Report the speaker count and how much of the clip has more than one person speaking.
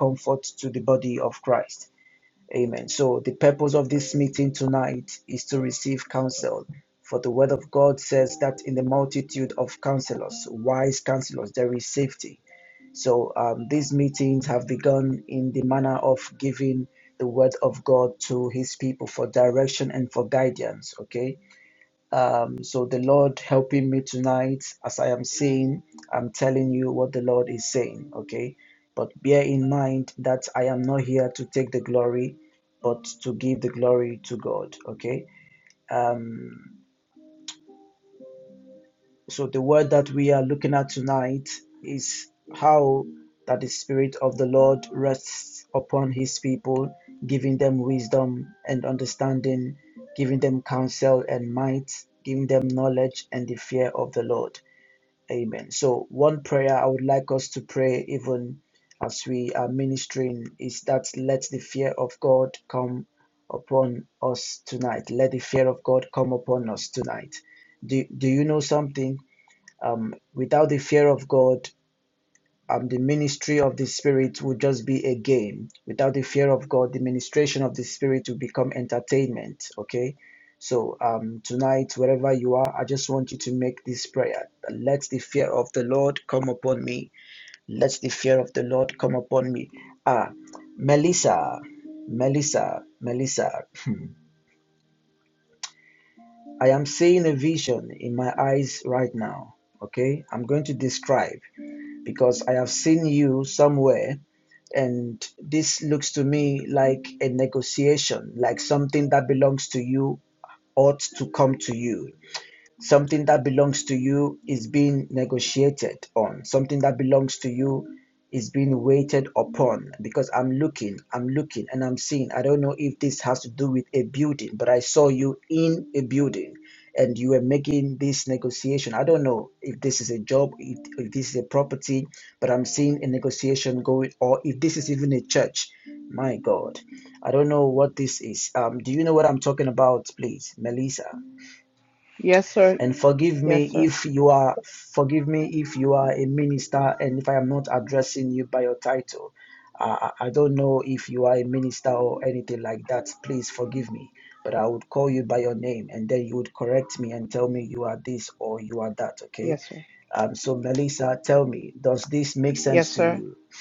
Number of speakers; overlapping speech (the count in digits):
2, about 1%